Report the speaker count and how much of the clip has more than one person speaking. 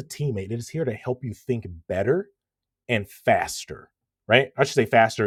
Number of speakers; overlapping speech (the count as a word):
one, no overlap